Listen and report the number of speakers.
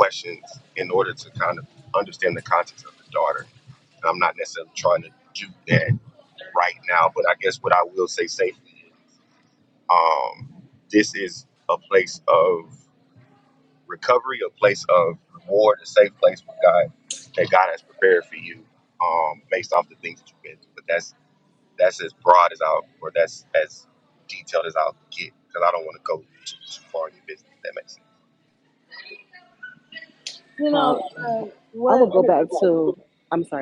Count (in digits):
3